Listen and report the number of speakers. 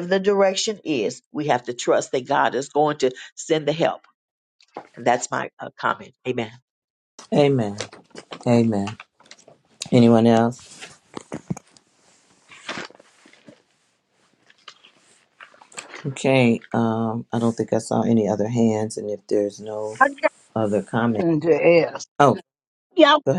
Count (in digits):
3